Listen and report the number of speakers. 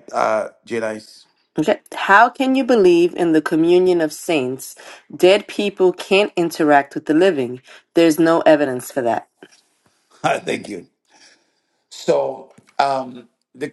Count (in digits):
2